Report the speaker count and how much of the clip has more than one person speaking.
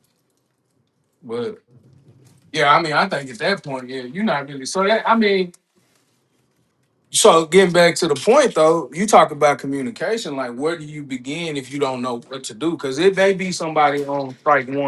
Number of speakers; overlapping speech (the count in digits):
1, no overlap